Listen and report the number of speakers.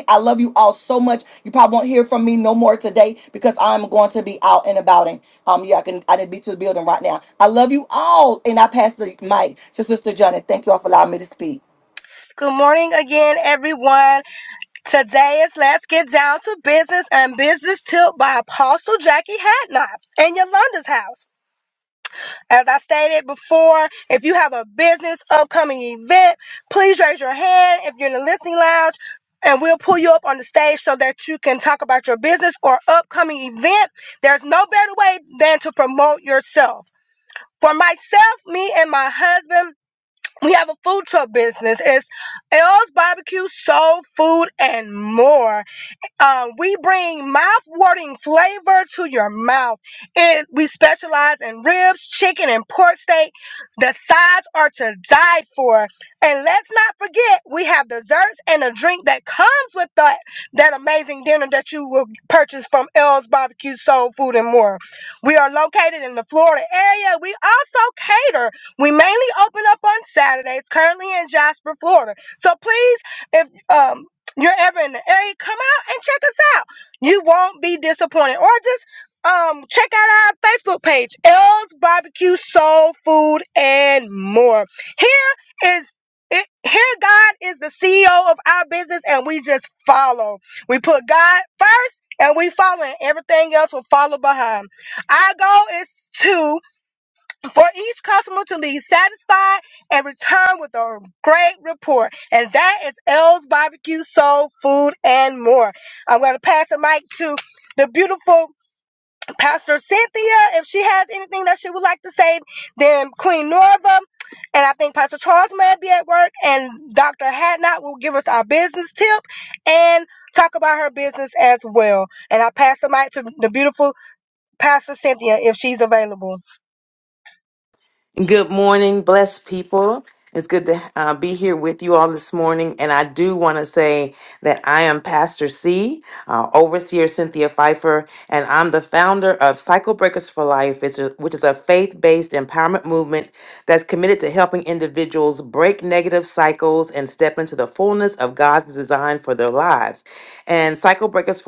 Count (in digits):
3